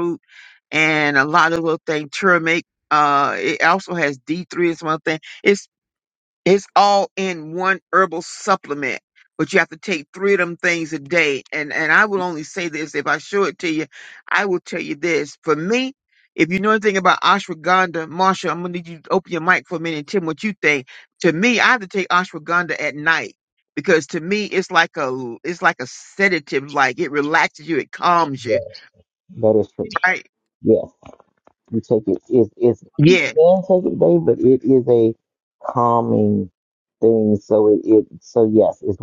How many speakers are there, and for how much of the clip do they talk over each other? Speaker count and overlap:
two, about 1%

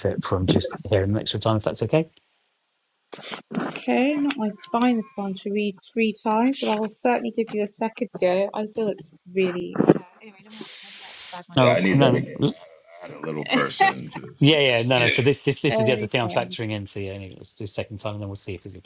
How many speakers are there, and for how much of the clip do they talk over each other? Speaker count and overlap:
three, about 9%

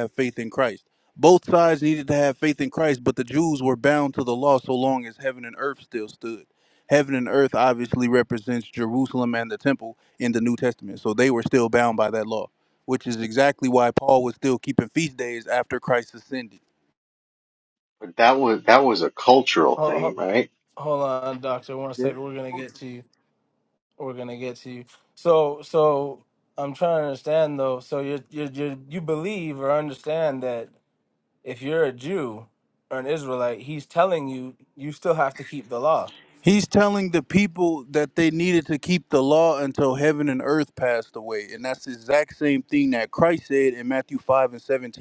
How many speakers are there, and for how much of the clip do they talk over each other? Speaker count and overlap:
three, about 1%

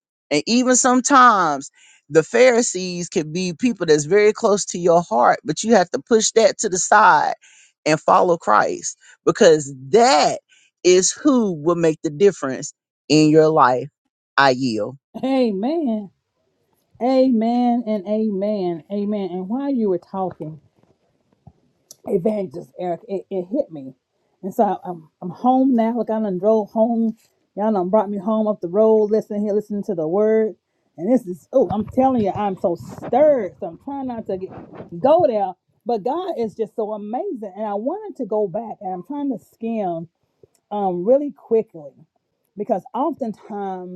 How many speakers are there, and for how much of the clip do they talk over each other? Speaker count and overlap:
two, no overlap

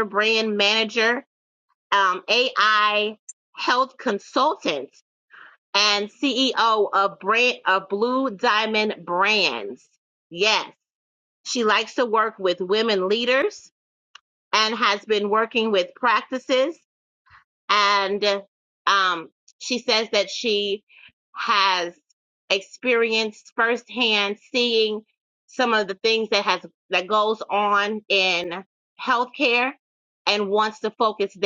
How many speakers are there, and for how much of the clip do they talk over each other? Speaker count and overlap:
one, no overlap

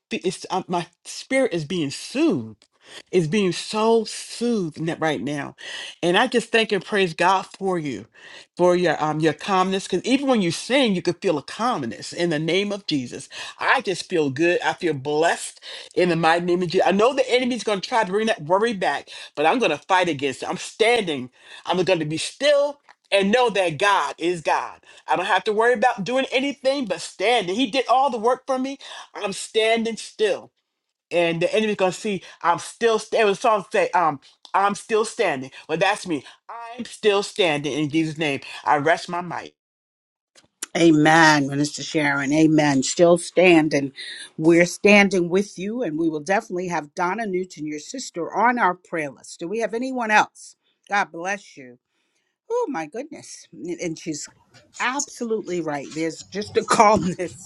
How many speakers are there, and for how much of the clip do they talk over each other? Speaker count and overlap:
two, no overlap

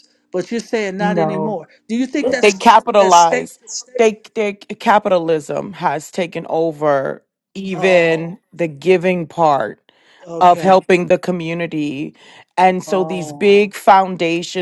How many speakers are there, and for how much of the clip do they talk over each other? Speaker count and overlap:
two, about 19%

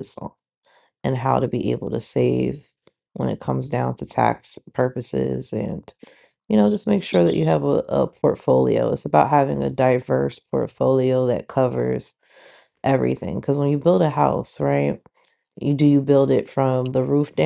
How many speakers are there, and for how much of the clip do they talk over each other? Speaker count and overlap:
one, no overlap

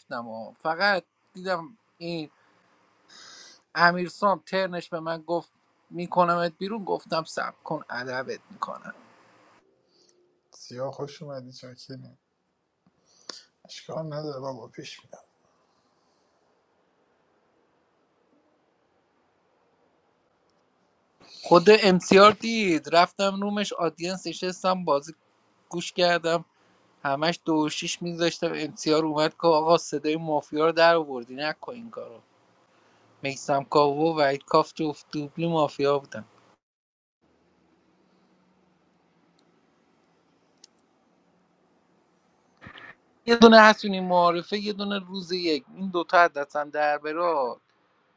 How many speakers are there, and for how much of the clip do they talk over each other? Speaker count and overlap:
two, no overlap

